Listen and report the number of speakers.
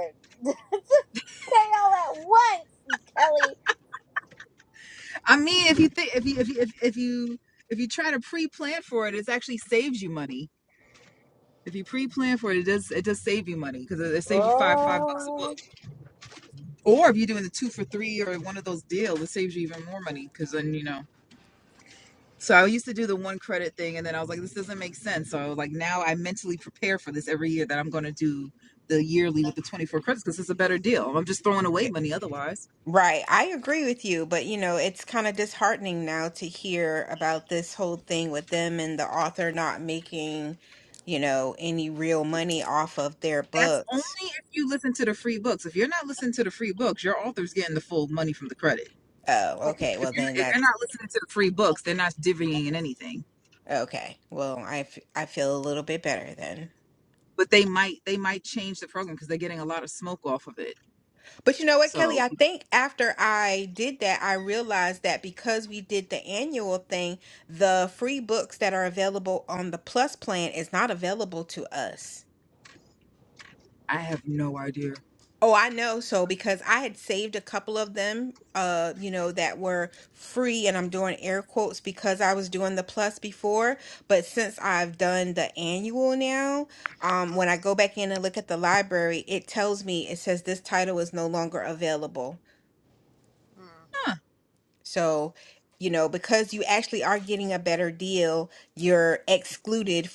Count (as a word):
three